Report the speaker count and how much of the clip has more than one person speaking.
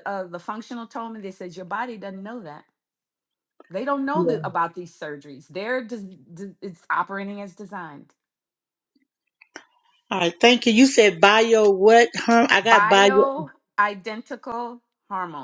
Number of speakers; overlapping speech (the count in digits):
2, about 4%